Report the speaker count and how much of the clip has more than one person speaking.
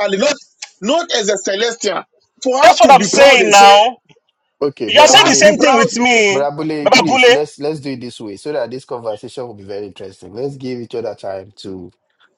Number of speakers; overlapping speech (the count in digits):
3, about 23%